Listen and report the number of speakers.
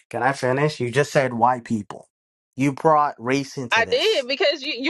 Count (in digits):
2